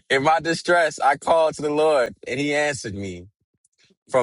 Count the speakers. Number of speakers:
one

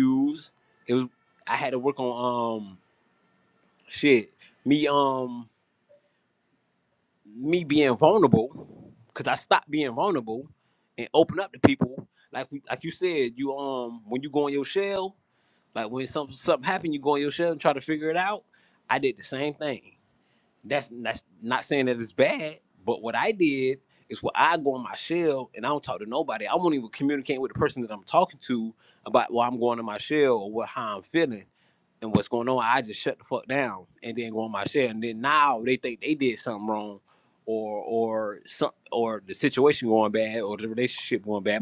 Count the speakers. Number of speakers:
one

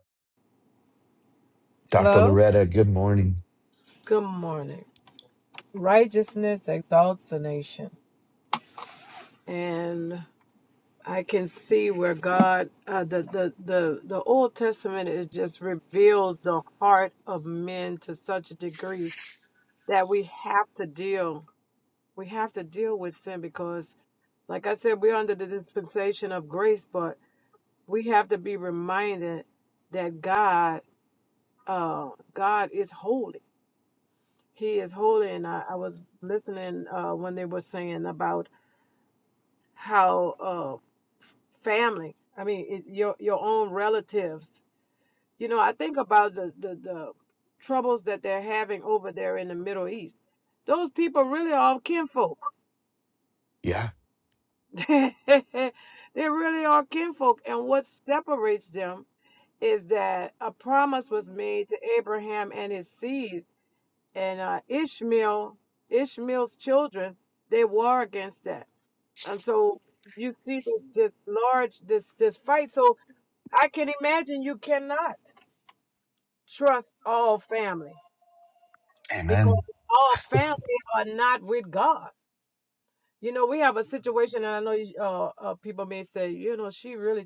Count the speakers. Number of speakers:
two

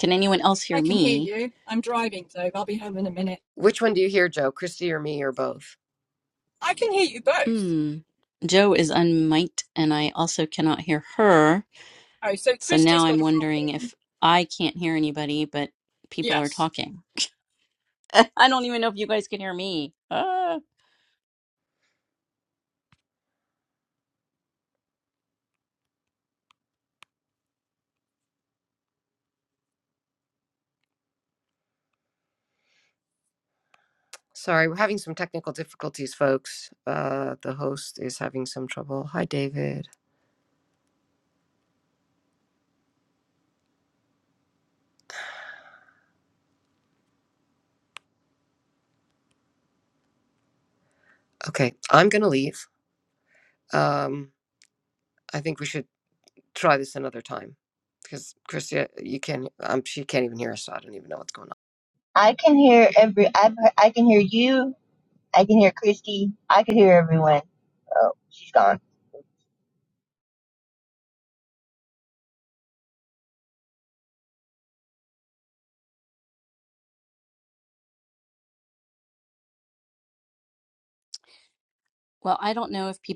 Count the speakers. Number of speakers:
four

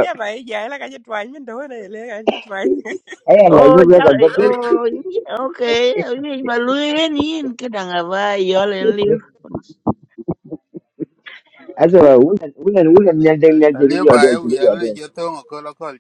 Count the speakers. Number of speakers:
four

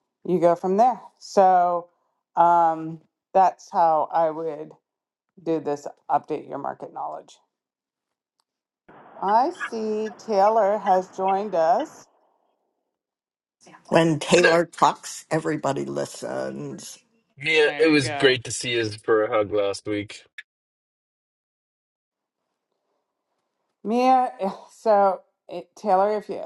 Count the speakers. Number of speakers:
three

